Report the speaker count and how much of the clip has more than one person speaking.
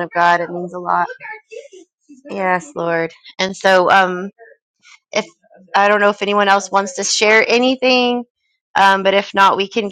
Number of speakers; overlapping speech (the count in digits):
1, no overlap